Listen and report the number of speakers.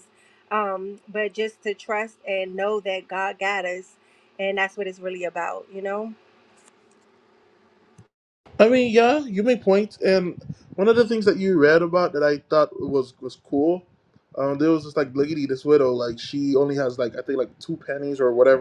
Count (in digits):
2